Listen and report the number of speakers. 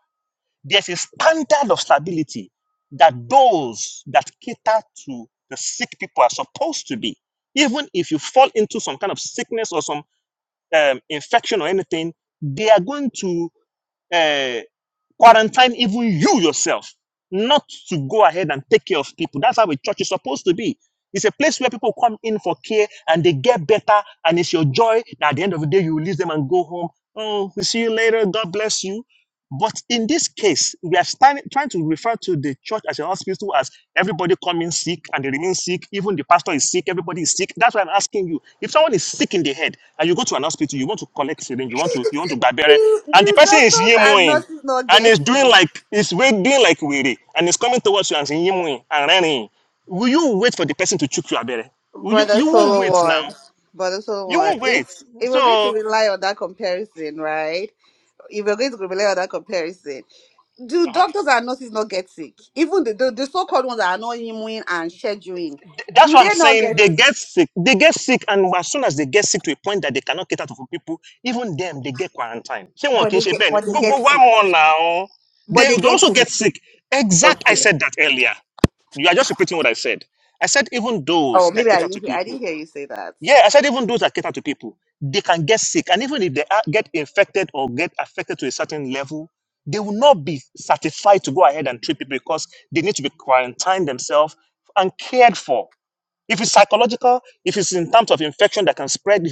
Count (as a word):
two